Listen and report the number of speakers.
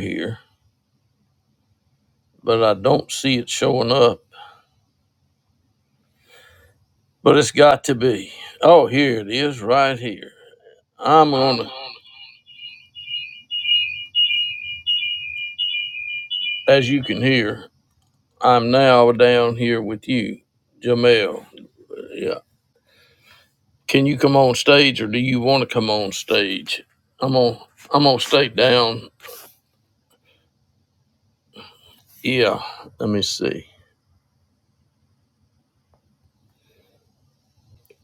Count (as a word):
one